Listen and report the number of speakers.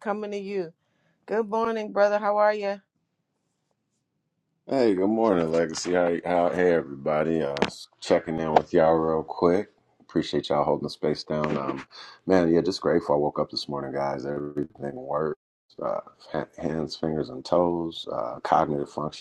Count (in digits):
2